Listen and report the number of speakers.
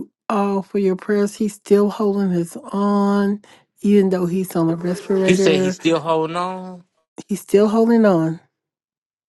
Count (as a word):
two